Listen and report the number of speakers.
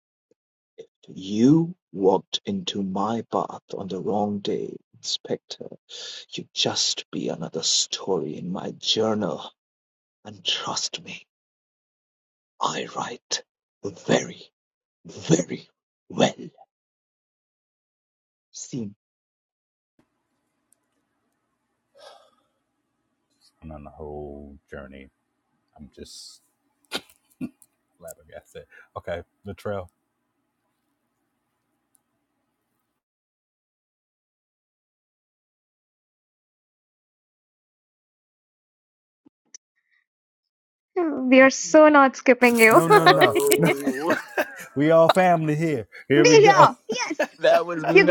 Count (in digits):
4